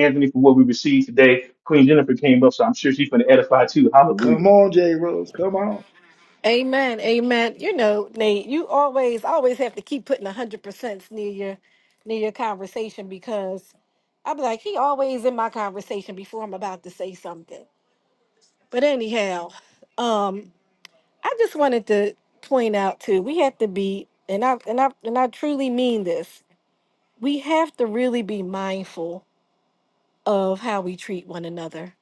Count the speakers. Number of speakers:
3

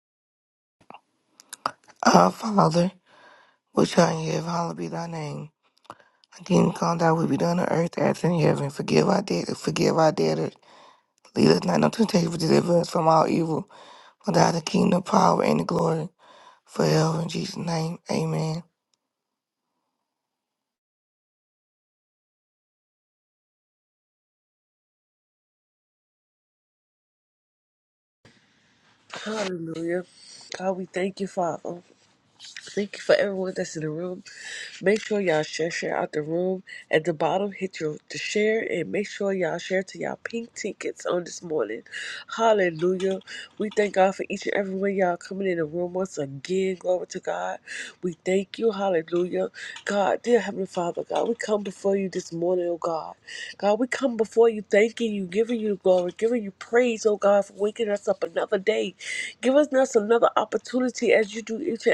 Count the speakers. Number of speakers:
2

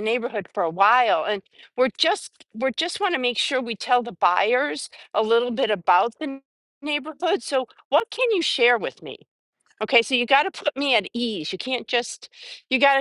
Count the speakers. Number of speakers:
1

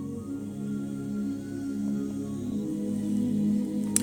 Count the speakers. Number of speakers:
0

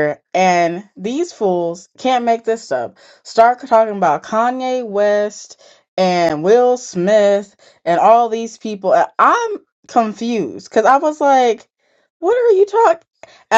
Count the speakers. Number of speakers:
1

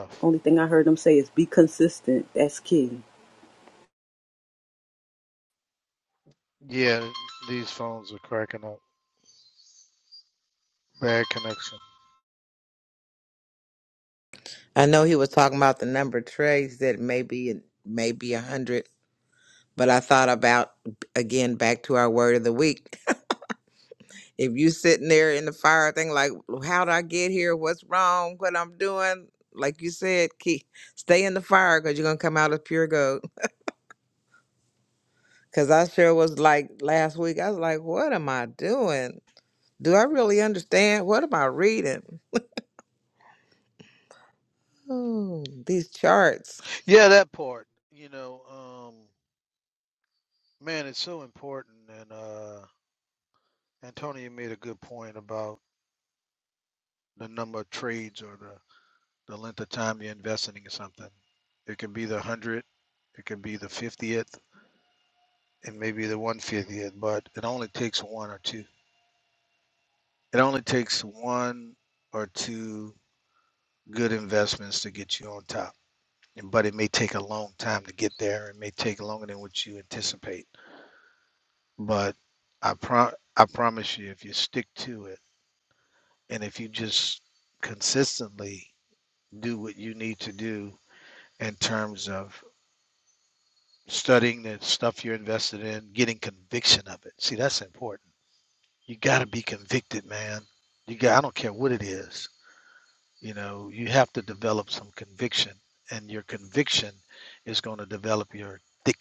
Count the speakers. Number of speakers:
3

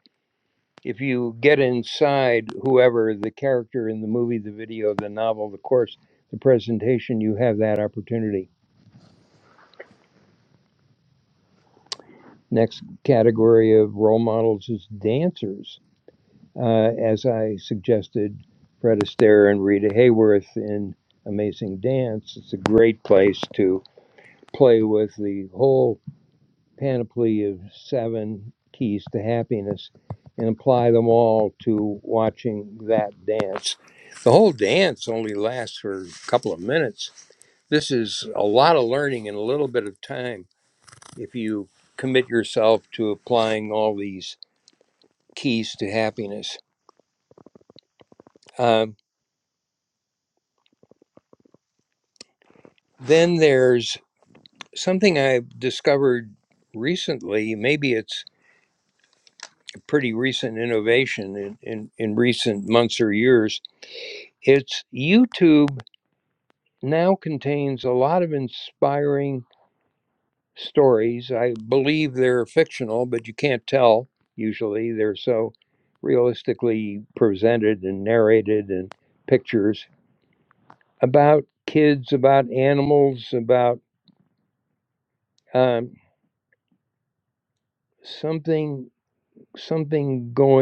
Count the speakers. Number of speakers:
1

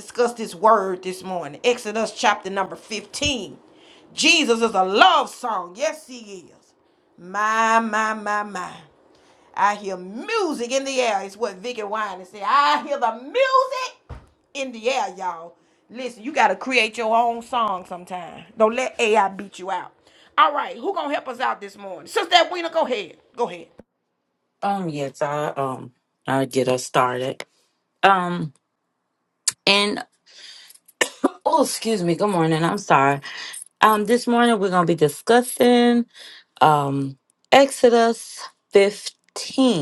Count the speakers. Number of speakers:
2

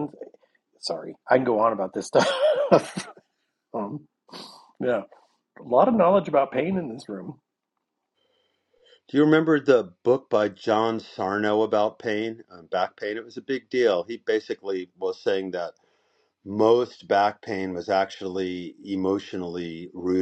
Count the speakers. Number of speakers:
2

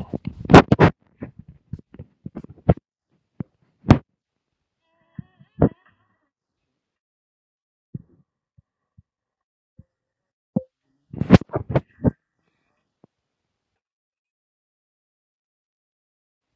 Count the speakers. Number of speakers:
0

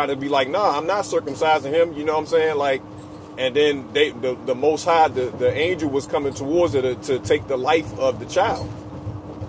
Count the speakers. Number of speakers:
1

